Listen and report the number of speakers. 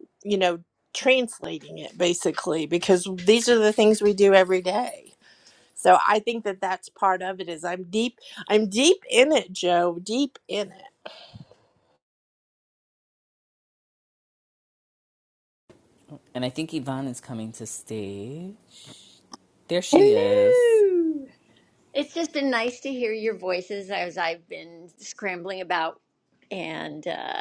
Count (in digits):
3